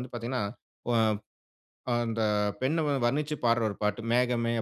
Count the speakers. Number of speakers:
one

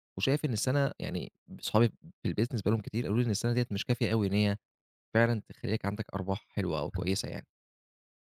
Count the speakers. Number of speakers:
one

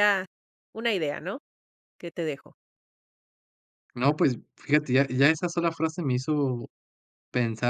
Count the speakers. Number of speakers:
two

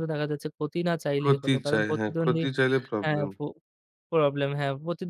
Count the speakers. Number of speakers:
two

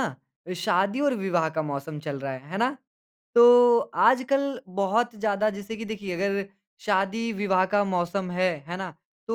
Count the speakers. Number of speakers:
one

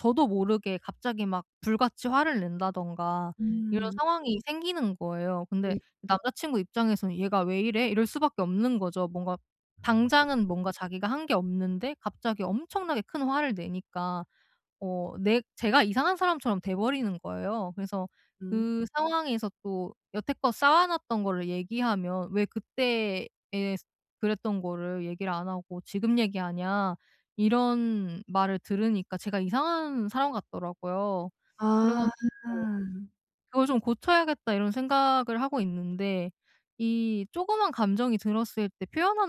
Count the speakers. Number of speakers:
two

